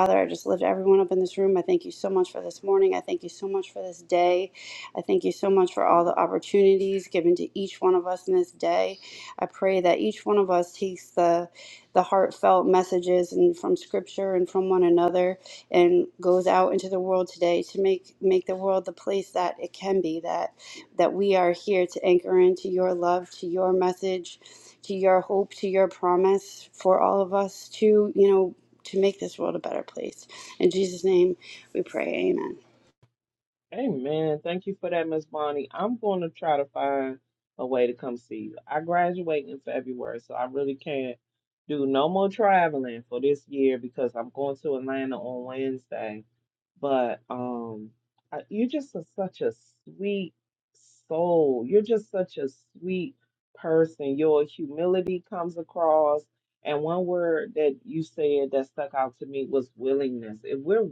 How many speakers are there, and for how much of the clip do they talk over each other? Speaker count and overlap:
two, no overlap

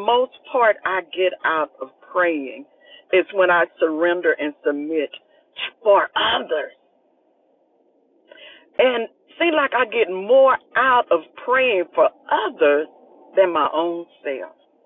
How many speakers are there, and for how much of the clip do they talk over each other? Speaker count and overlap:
one, no overlap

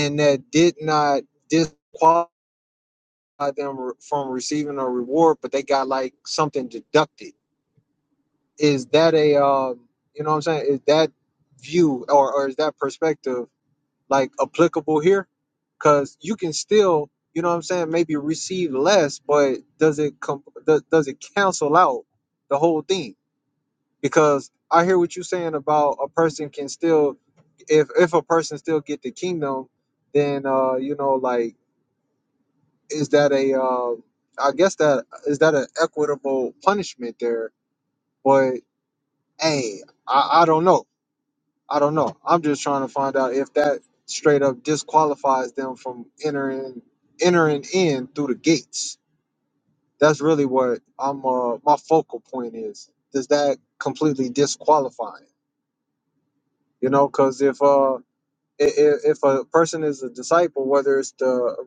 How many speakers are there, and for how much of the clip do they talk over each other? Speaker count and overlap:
one, no overlap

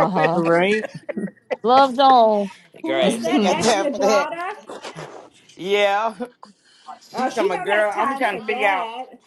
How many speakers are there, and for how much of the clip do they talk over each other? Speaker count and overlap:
four, about 39%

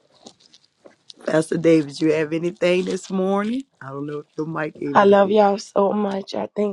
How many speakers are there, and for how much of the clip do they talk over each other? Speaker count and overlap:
two, about 7%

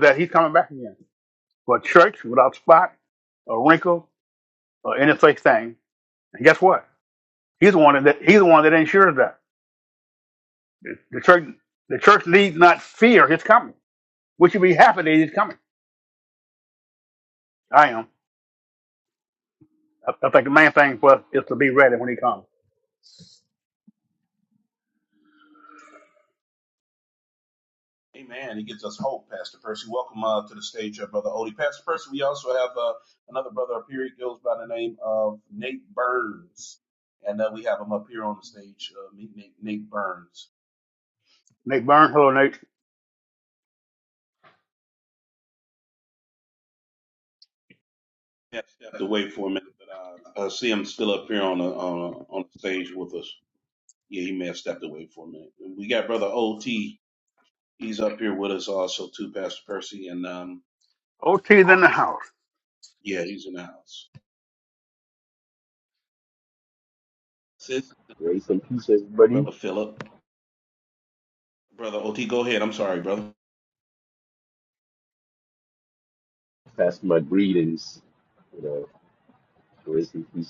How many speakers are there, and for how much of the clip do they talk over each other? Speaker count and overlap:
three, under 1%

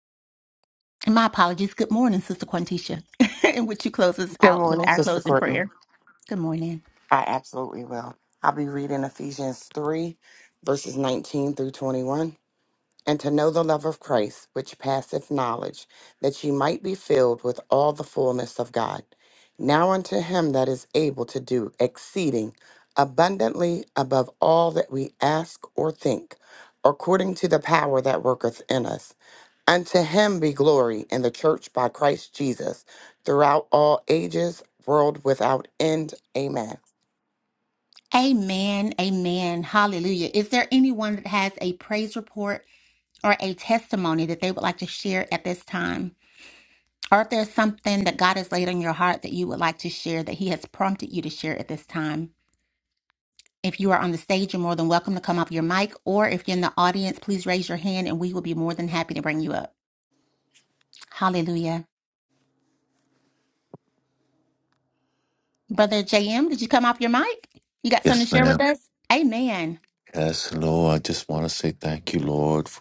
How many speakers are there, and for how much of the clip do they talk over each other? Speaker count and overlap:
three, about 2%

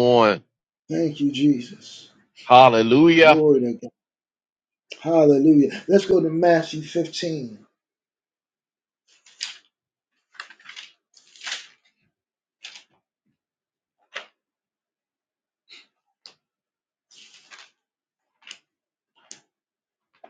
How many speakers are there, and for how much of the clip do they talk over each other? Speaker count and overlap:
two, about 1%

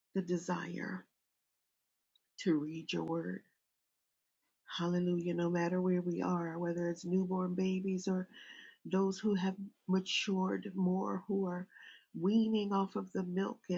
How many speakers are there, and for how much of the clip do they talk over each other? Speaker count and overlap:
one, no overlap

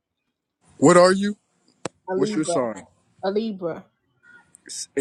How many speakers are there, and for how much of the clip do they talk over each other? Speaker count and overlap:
two, about 8%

